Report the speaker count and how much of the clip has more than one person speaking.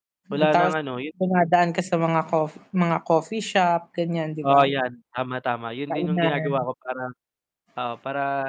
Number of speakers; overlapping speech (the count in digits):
2, about 16%